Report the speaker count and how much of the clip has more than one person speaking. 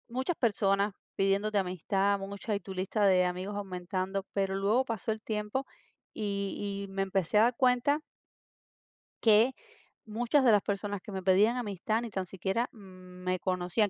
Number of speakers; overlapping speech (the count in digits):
1, no overlap